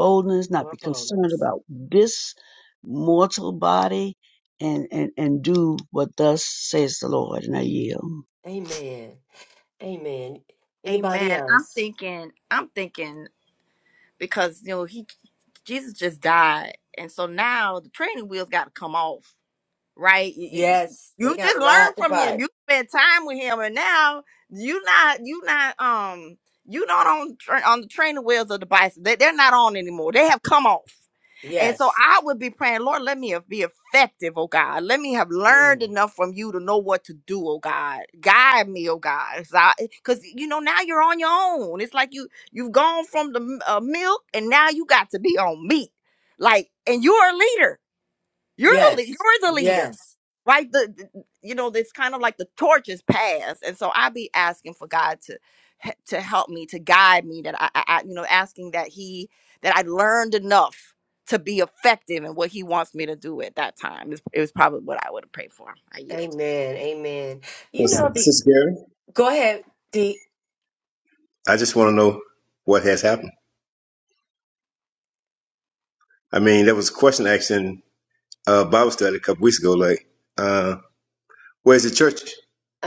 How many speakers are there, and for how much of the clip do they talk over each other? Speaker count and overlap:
four, about 6%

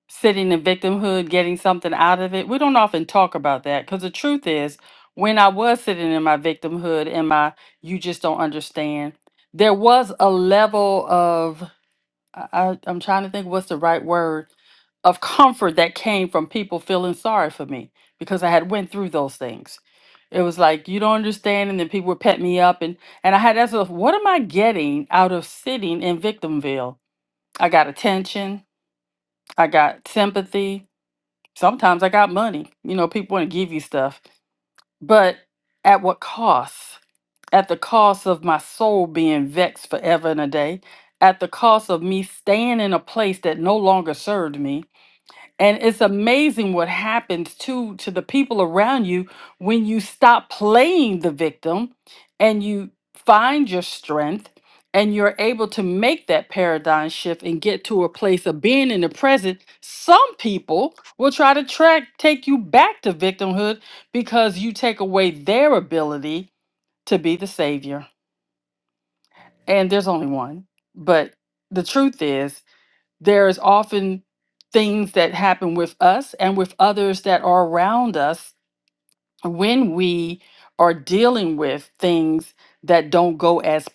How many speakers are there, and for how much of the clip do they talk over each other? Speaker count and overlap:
one, no overlap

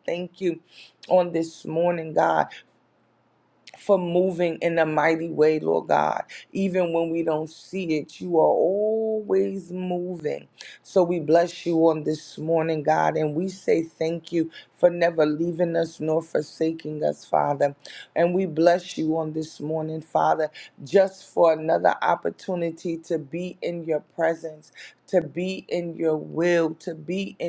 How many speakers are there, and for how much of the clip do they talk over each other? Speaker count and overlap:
one, no overlap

